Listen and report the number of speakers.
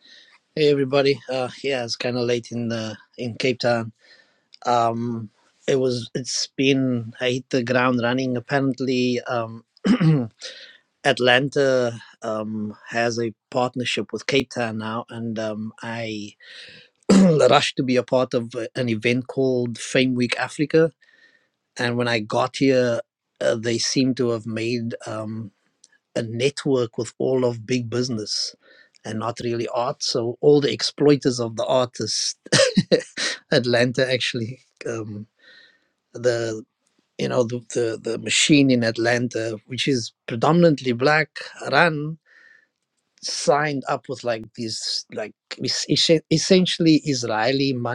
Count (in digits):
1